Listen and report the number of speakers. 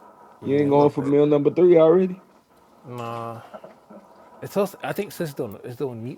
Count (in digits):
2